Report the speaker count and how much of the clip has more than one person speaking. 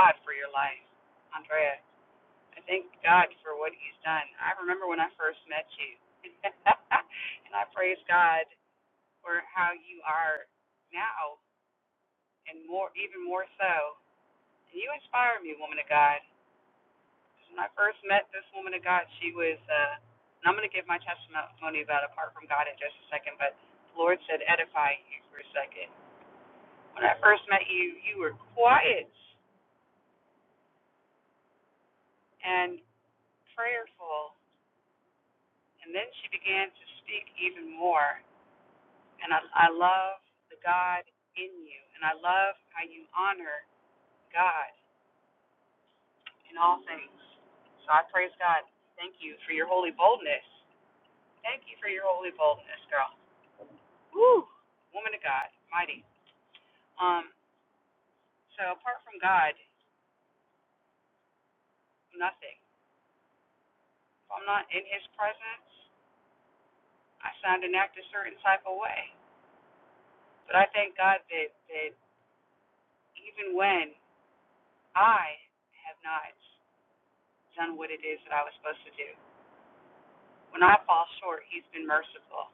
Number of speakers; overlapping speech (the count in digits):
1, no overlap